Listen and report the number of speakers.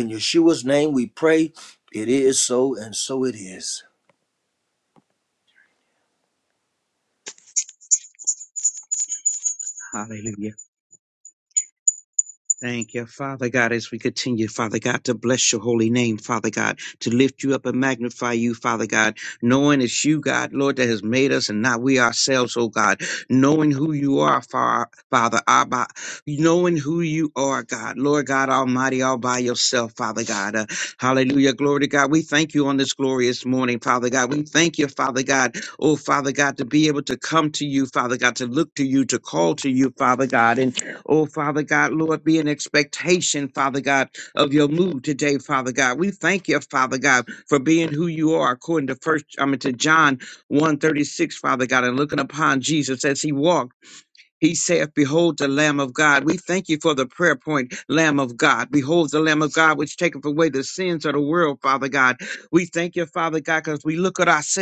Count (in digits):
2